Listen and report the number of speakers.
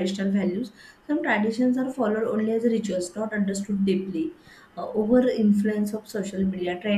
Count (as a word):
one